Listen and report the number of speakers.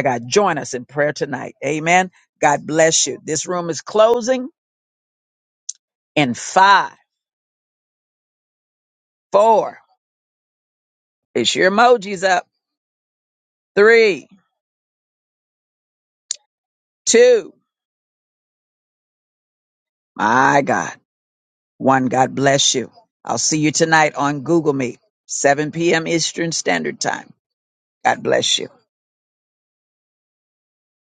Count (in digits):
1